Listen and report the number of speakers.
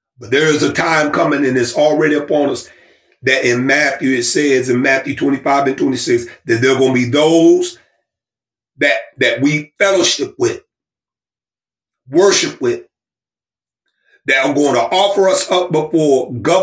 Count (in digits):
1